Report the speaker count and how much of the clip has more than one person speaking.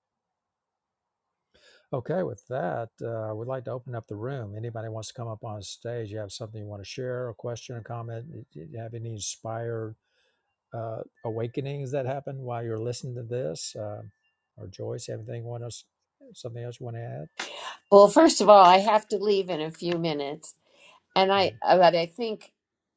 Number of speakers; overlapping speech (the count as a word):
two, under 1%